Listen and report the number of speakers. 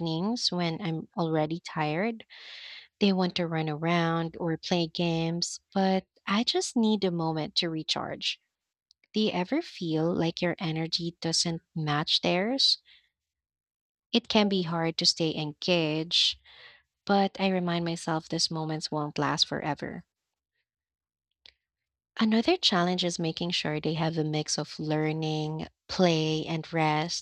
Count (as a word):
one